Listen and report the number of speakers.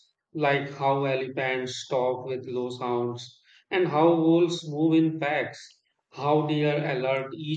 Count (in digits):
1